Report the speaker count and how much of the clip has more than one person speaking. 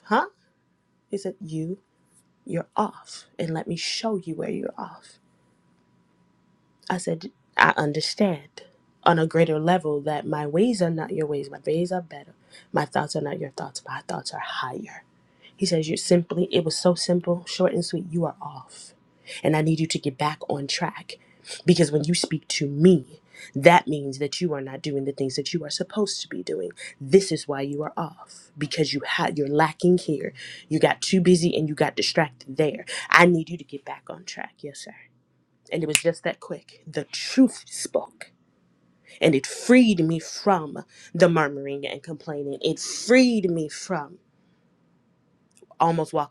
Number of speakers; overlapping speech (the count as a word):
one, no overlap